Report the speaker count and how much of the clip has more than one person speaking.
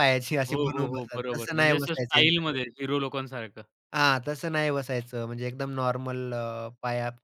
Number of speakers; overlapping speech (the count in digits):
2, about 29%